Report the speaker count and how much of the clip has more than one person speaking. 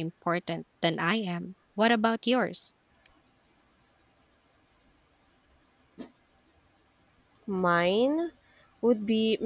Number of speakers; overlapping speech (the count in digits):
2, no overlap